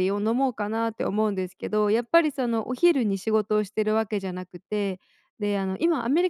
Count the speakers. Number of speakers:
1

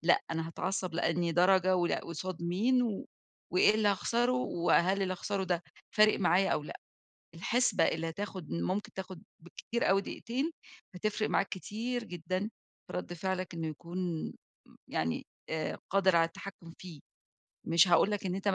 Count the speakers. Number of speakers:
1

